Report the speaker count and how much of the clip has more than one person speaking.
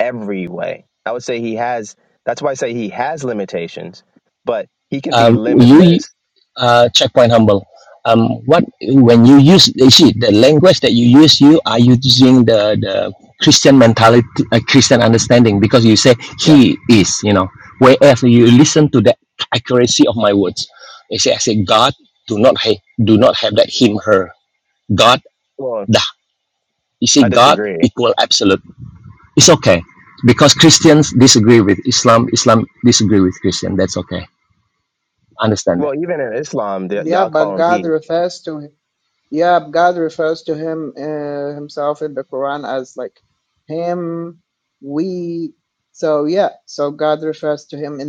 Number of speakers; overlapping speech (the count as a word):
three, about 6%